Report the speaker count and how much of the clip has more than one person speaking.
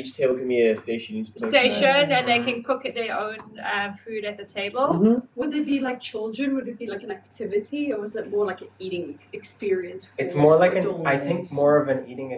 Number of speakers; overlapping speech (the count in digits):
4, about 14%